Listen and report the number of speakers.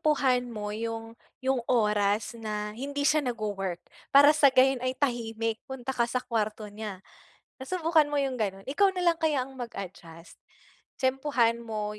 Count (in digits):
1